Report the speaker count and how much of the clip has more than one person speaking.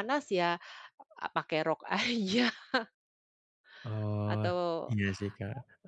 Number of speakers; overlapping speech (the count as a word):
two, about 5%